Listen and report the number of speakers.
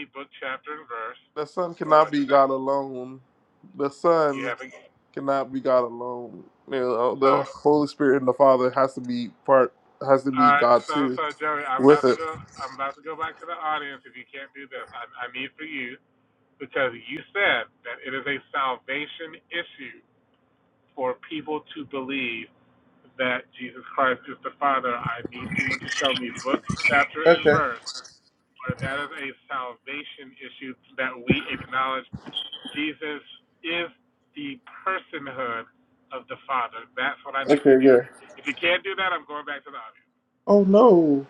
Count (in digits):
2